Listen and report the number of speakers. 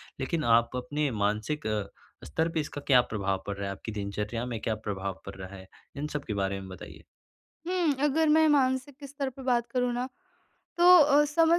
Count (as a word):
two